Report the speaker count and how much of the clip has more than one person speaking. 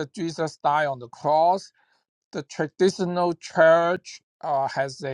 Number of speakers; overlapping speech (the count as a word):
one, no overlap